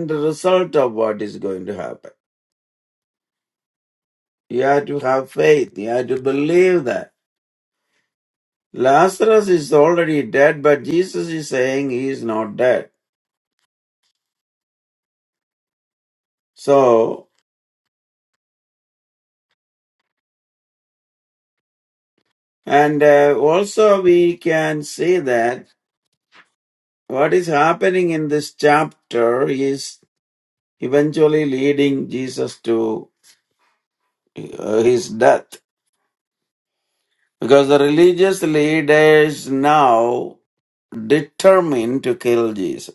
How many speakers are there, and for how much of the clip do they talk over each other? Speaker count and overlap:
1, no overlap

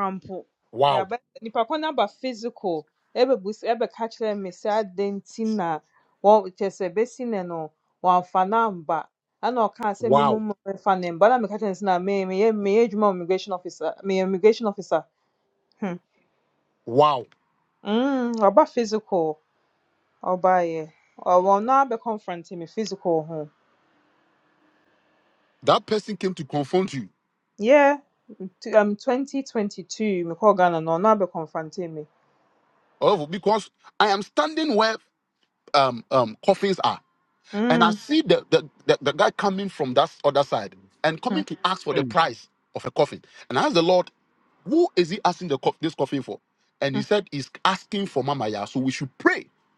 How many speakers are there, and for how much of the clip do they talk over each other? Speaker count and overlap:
2, about 1%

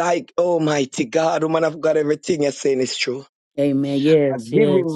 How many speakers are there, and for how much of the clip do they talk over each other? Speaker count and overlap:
2, about 11%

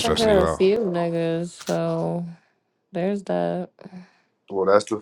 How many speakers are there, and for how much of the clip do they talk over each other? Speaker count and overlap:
2, about 13%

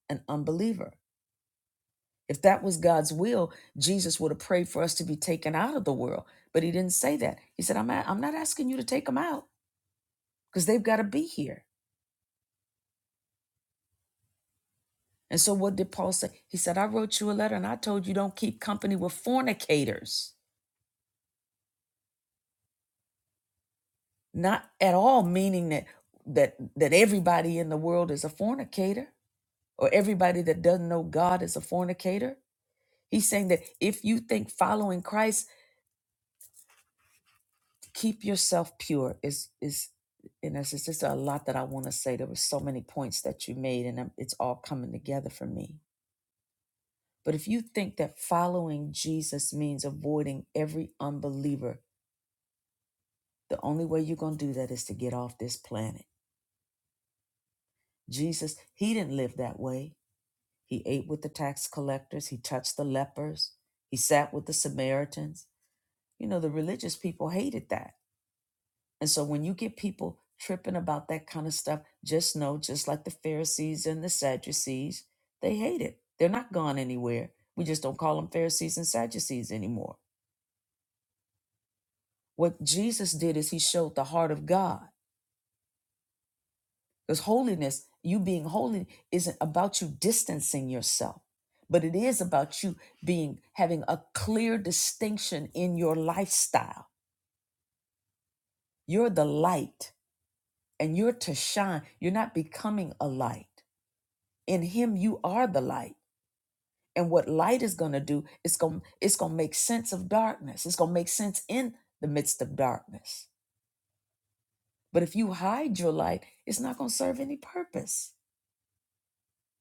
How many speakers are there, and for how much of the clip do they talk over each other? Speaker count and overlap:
1, no overlap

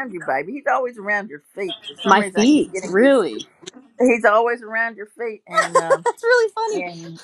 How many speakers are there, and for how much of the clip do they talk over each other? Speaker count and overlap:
2, about 18%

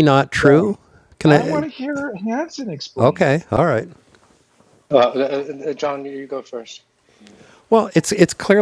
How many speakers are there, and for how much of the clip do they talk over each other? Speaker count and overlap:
3, about 13%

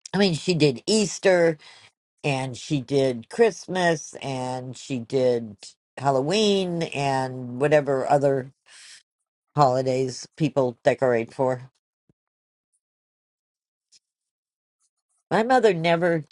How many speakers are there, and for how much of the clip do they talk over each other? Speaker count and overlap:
1, no overlap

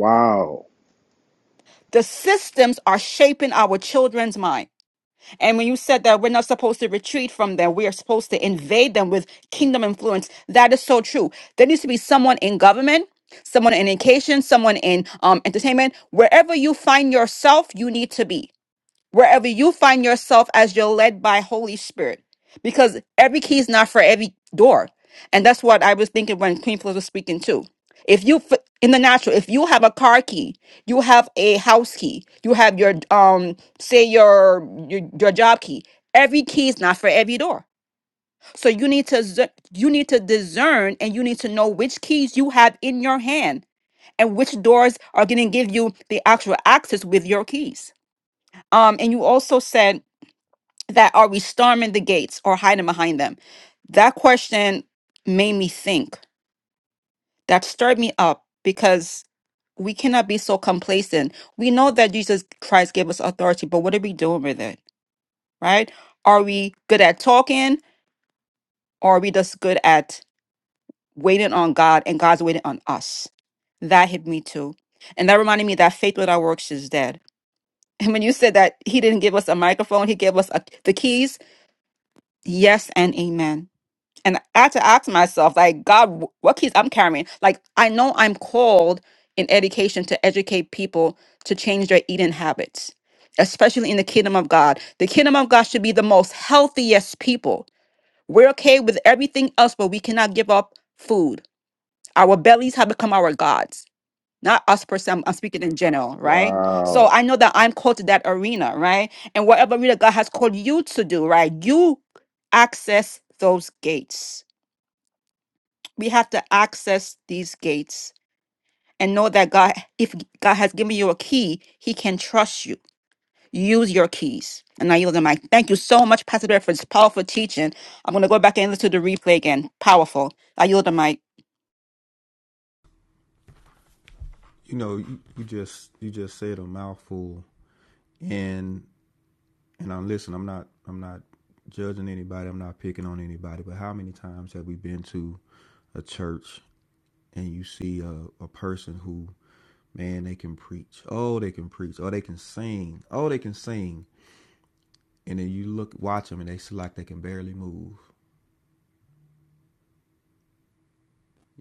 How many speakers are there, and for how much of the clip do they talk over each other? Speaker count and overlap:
3, under 1%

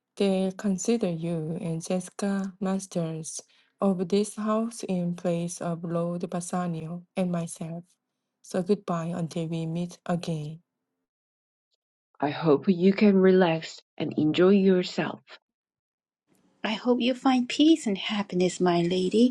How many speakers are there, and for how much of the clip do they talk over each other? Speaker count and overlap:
3, no overlap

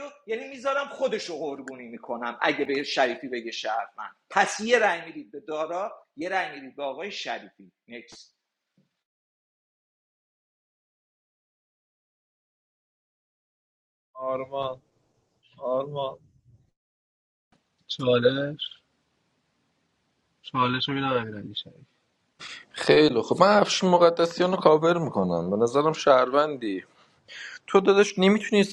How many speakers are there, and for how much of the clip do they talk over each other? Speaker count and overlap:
4, no overlap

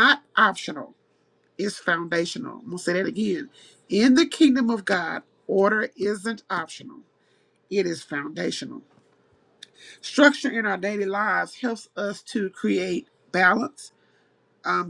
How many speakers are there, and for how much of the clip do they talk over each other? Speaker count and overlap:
1, no overlap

